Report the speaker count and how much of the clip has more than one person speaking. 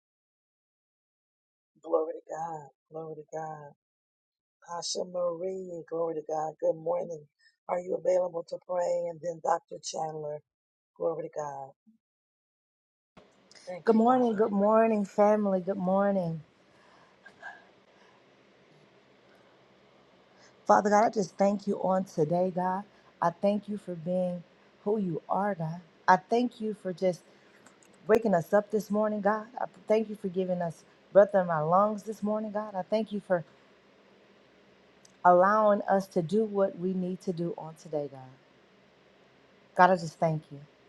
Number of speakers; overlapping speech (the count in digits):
2, about 1%